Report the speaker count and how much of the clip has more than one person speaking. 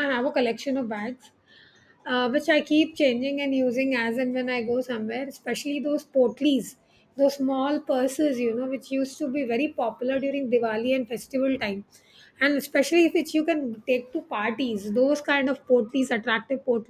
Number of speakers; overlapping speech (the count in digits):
1, no overlap